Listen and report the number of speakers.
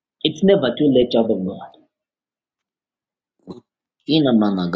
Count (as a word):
one